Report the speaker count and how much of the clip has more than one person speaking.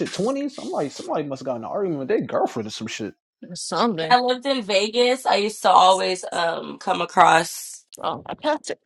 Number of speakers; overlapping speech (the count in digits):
3, about 2%